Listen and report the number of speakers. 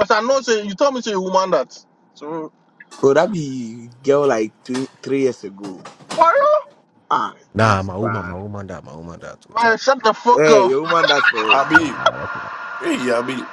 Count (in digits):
4